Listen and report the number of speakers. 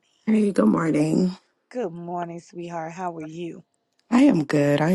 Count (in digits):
2